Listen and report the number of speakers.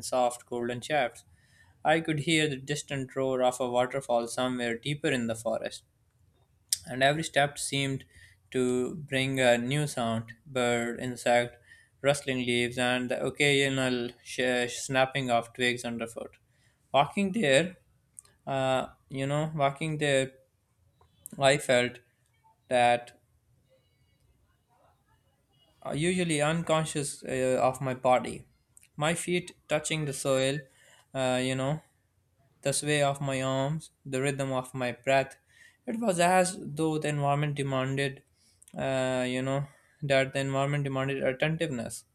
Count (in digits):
1